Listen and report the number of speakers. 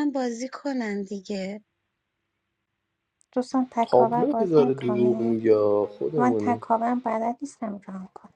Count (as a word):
three